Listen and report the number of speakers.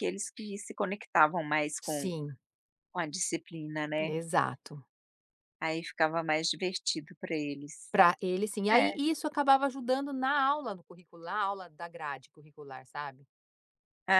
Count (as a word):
two